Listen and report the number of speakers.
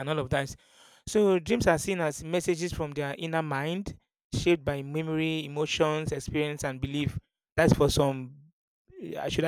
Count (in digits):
1